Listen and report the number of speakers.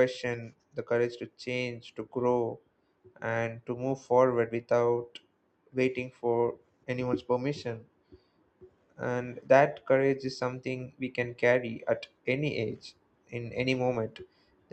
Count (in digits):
1